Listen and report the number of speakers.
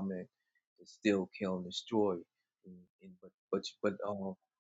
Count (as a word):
one